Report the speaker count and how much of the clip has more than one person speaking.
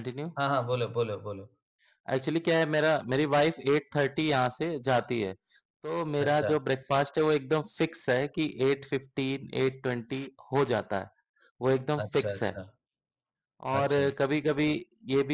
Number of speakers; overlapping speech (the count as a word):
two, about 9%